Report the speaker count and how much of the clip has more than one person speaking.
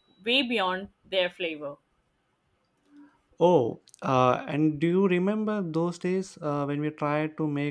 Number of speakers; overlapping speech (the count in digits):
2, no overlap